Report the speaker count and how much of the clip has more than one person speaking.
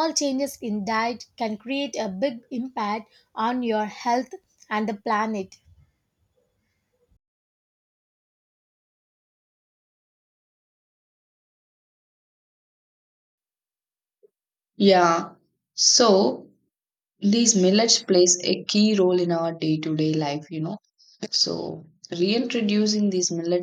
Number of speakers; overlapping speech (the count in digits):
2, no overlap